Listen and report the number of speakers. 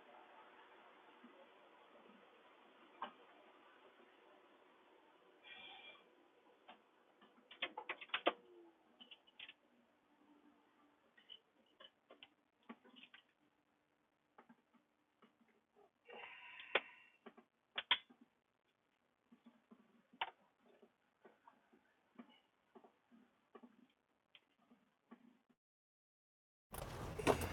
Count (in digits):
0